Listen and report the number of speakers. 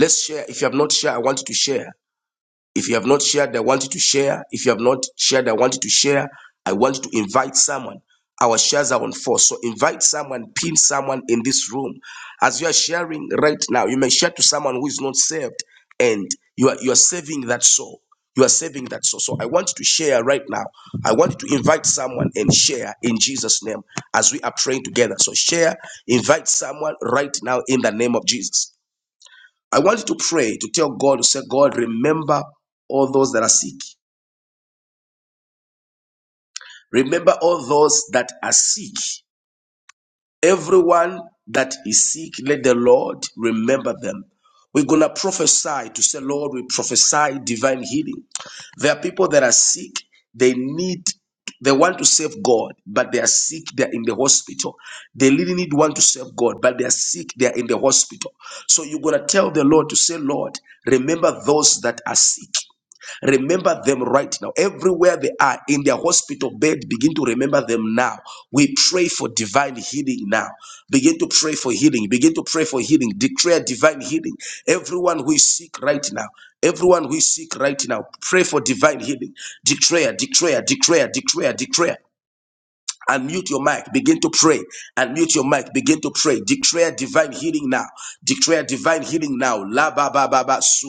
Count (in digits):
1